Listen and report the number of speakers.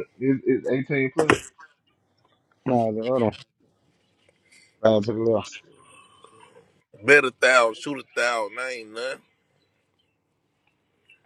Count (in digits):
3